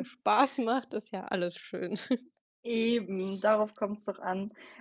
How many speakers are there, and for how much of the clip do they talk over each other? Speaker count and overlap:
2, no overlap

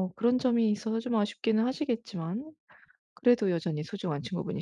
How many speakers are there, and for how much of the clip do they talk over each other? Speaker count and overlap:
1, no overlap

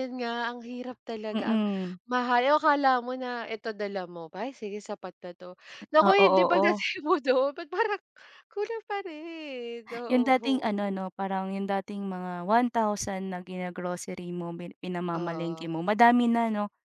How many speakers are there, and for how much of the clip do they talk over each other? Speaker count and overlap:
2, about 12%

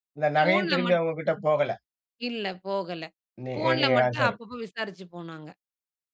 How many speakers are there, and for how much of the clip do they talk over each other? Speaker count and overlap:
2, about 22%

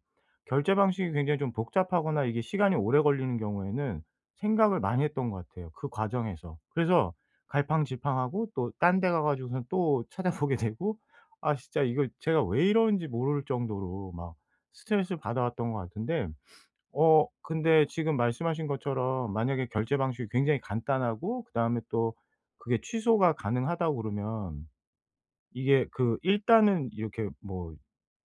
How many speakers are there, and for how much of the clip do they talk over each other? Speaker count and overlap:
1, no overlap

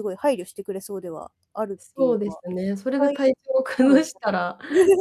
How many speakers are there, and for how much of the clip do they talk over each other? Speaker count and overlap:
2, about 24%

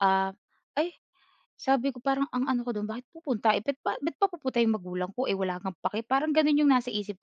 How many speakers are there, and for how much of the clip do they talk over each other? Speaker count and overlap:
1, no overlap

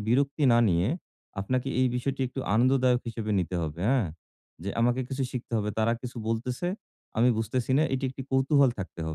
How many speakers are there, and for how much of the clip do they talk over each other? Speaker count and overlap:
1, no overlap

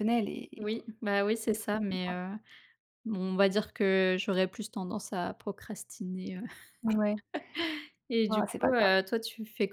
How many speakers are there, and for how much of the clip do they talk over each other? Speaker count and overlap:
2, about 14%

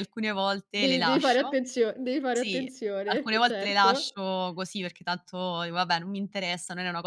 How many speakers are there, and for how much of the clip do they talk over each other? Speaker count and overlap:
2, about 29%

